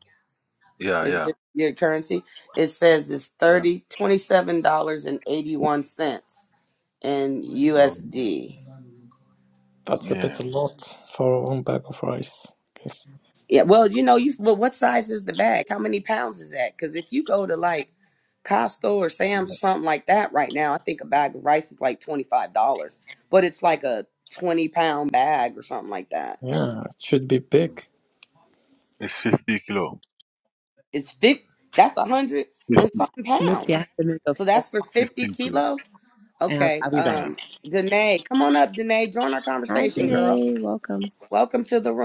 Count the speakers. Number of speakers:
4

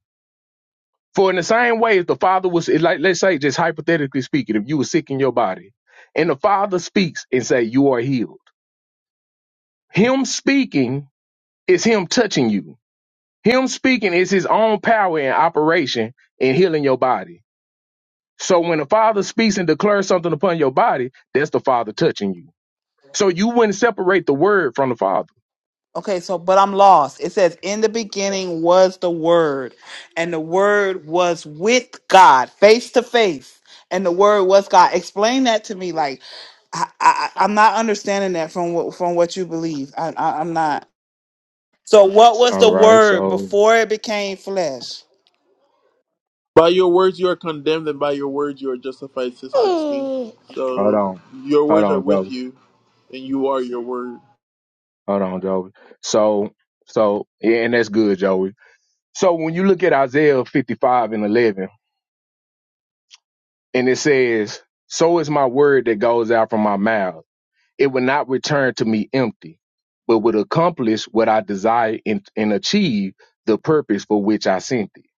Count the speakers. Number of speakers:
3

